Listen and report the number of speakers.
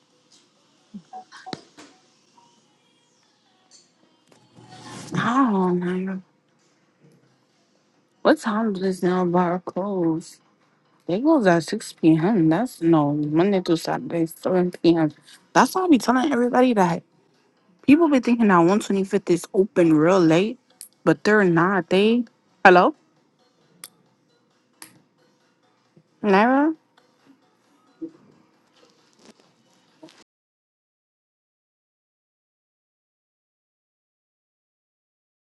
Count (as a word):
one